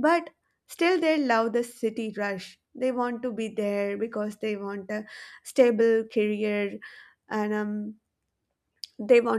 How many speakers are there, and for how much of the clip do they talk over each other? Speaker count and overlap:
1, no overlap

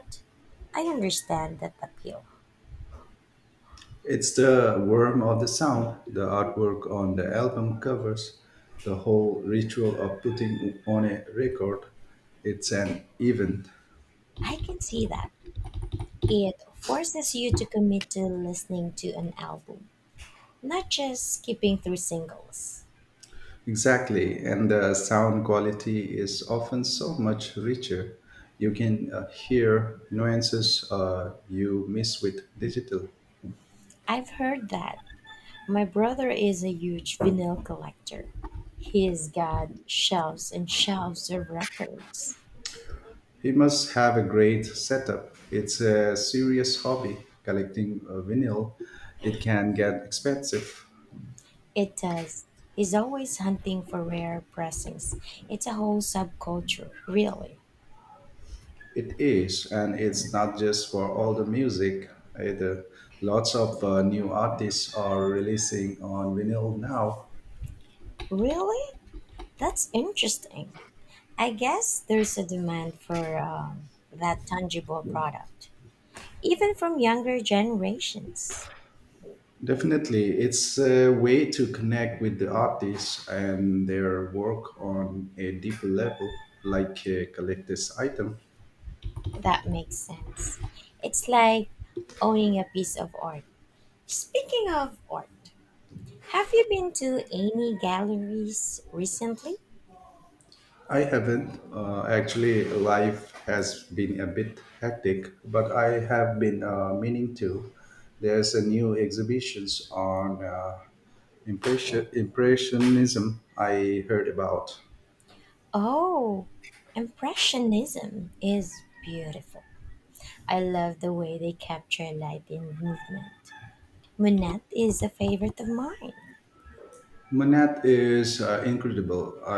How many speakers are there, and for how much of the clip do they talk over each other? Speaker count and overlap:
2, no overlap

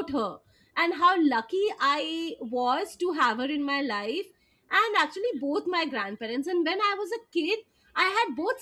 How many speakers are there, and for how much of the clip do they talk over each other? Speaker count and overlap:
1, no overlap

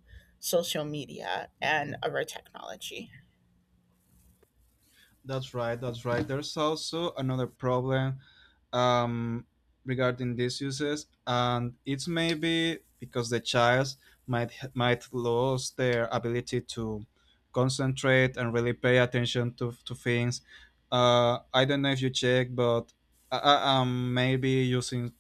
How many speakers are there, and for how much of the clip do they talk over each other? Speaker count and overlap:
2, no overlap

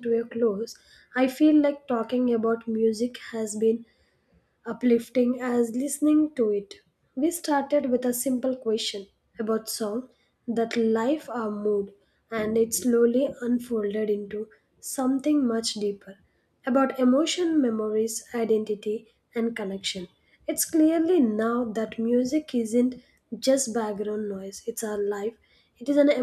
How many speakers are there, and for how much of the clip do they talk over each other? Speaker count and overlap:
1, no overlap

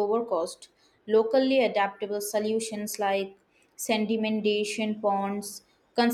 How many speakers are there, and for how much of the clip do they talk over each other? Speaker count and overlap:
1, no overlap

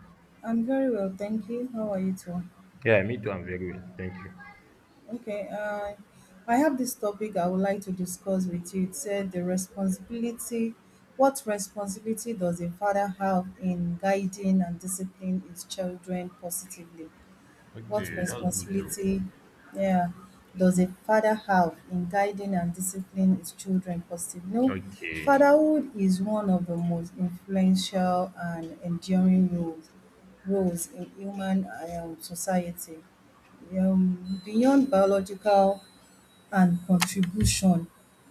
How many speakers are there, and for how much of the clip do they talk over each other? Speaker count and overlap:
2, about 4%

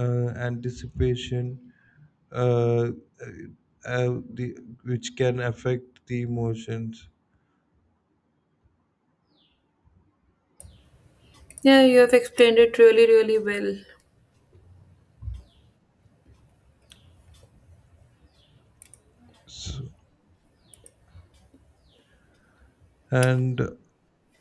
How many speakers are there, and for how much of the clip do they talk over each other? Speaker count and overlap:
2, no overlap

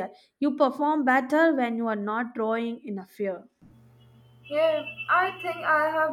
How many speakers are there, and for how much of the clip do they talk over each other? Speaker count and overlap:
2, no overlap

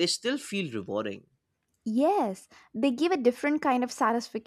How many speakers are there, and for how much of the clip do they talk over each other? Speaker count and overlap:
2, no overlap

